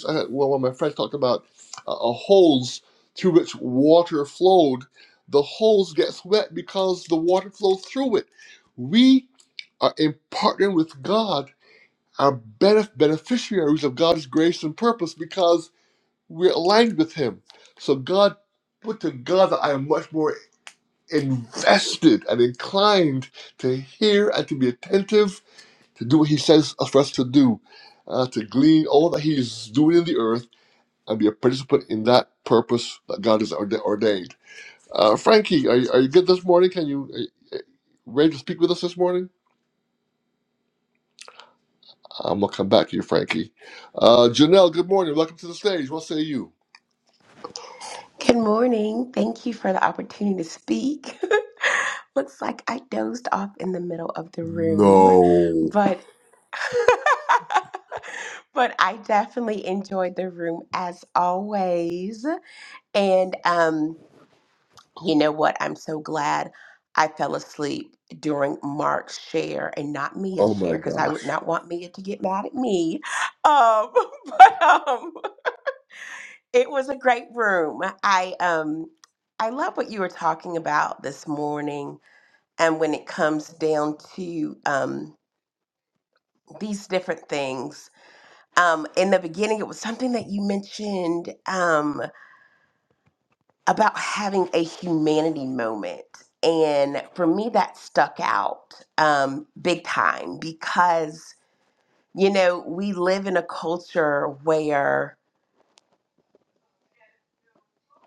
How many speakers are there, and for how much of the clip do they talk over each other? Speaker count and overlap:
two, about 1%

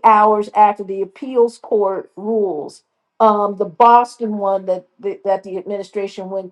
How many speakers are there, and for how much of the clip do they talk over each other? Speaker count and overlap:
one, no overlap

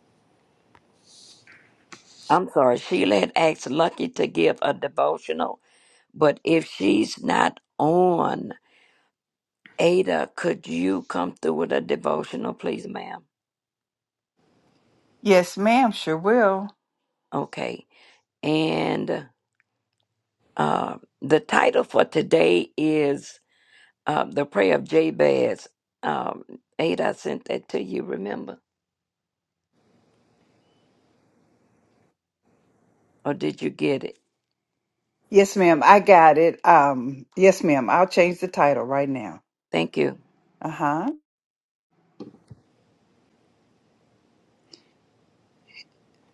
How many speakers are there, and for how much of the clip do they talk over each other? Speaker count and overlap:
two, no overlap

